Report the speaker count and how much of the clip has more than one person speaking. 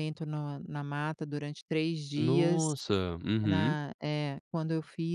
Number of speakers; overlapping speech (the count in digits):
2, about 14%